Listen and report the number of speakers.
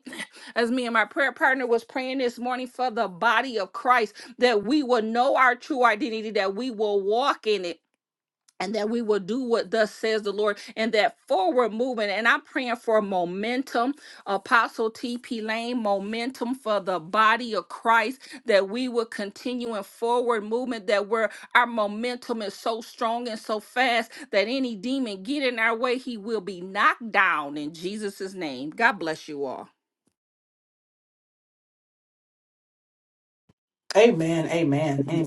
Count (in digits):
2